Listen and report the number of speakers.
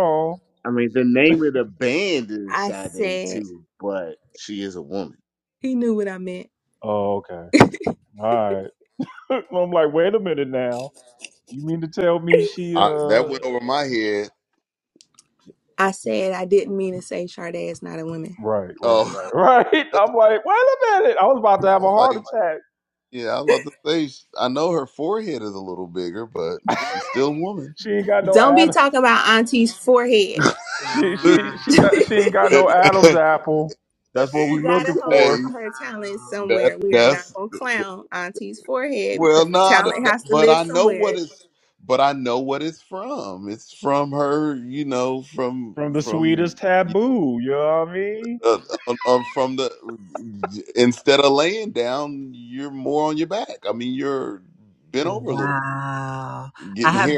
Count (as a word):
five